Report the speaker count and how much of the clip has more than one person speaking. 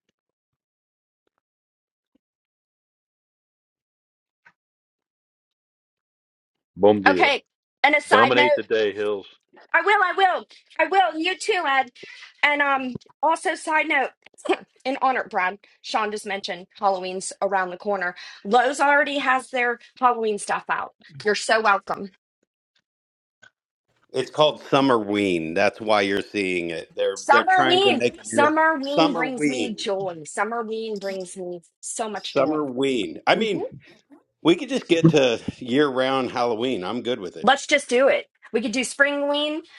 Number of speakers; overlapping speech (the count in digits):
3, about 8%